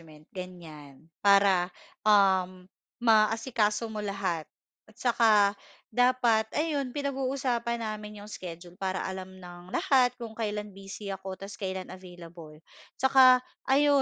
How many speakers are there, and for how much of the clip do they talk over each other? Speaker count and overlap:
one, no overlap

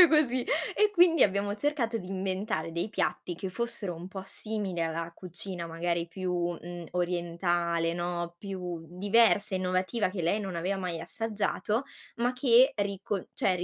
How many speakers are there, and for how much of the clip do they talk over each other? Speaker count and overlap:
one, no overlap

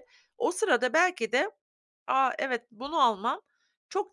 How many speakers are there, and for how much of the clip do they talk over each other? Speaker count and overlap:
one, no overlap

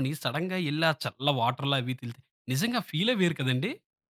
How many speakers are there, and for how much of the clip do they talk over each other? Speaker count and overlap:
one, no overlap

